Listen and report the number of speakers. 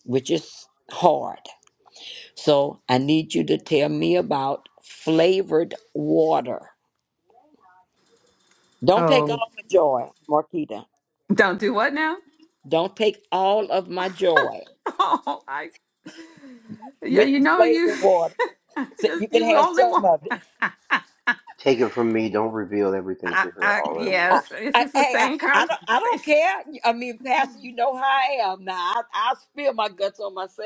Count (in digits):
3